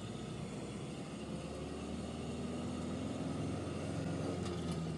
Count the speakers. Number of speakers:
0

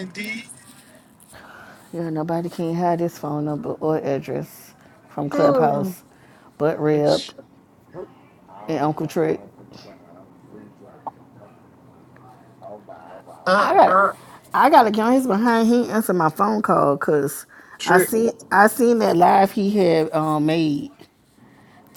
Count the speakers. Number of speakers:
3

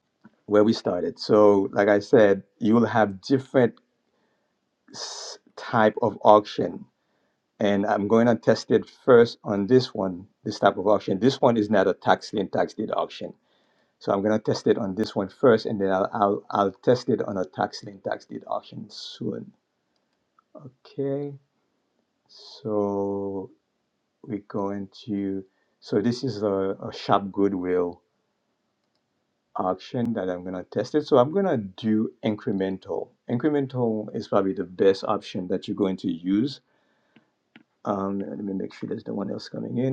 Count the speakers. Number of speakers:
1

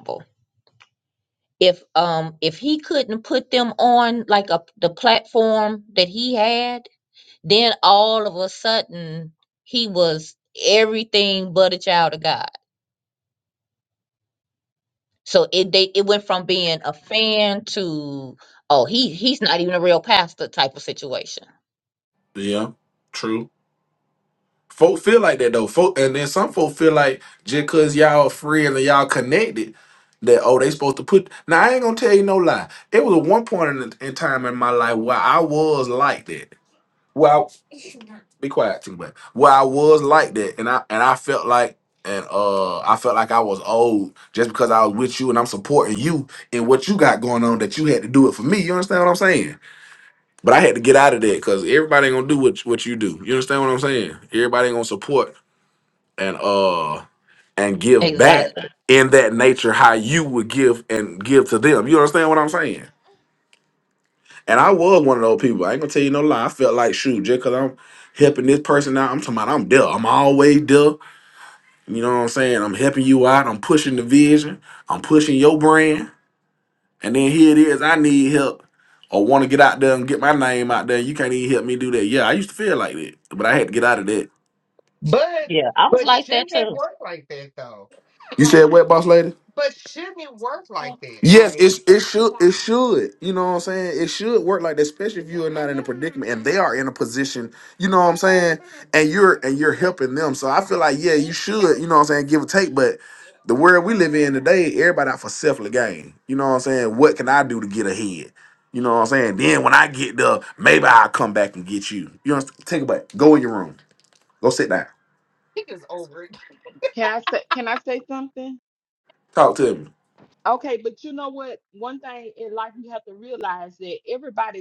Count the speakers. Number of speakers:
4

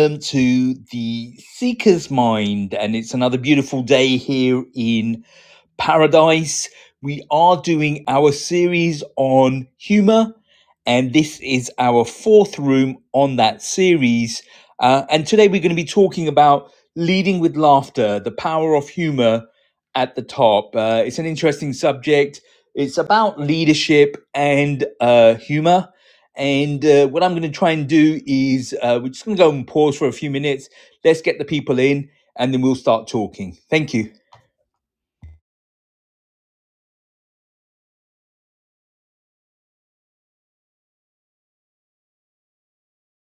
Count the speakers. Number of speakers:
1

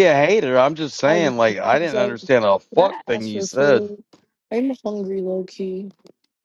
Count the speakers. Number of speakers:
2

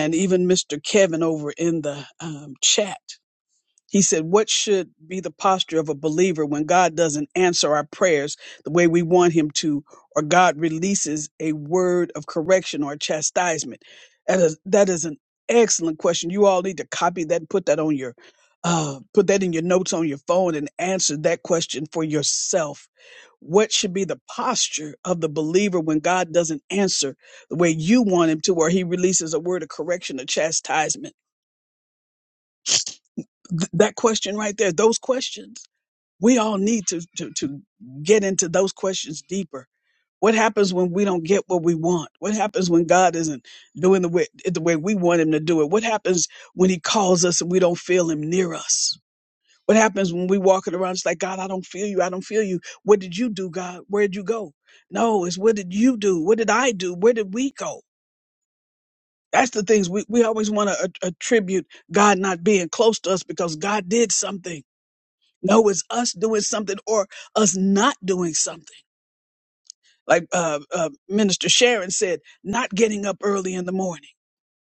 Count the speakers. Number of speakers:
1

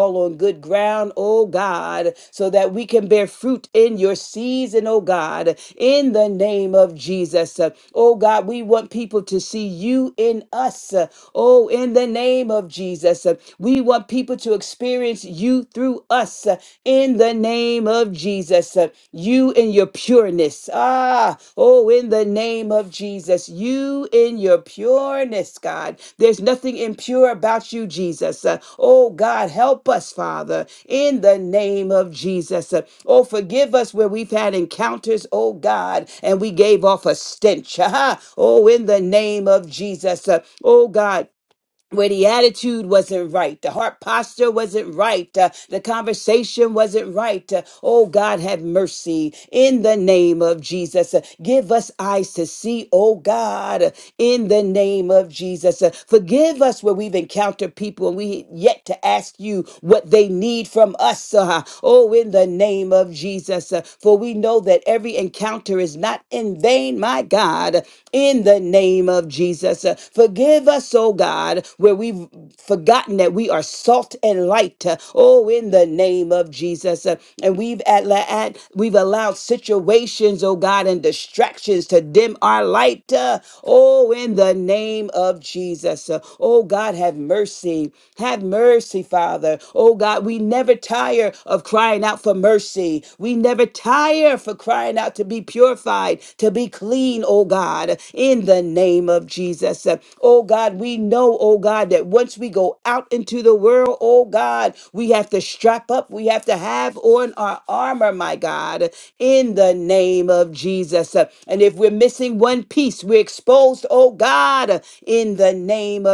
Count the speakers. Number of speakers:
1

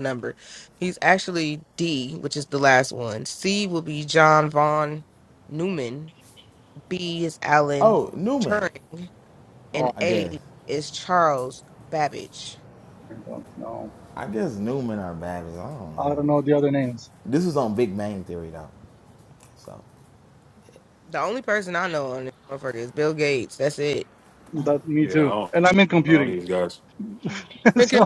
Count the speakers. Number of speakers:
4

